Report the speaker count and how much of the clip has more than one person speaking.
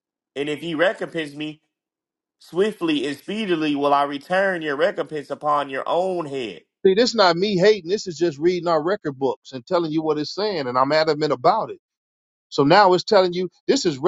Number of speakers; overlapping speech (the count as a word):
two, no overlap